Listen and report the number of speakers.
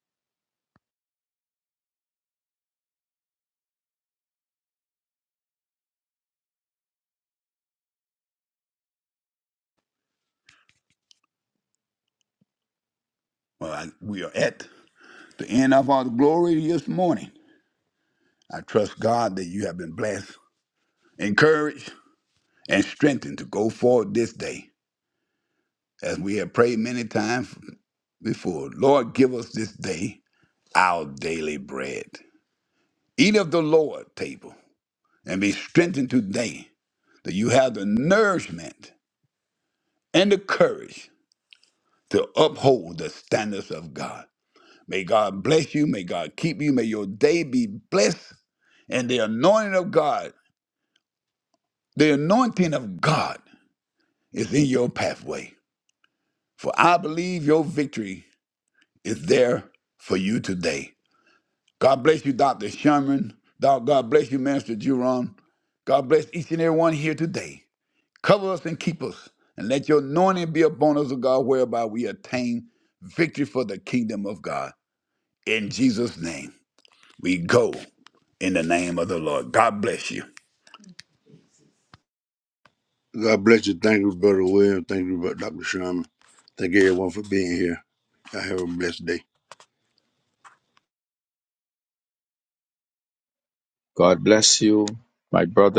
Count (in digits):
3